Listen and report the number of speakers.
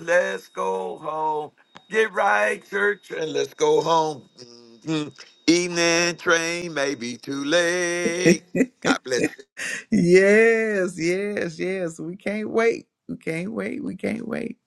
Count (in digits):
2